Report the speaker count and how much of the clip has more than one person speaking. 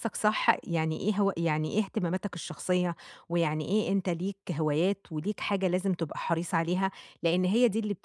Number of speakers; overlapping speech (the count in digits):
1, no overlap